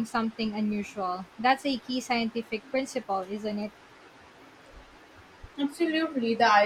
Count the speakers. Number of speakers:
two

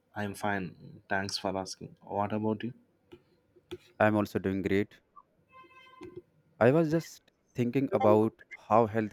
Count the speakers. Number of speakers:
two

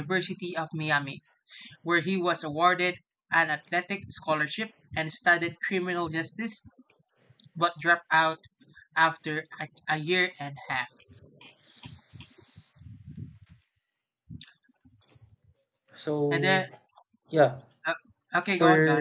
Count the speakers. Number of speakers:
two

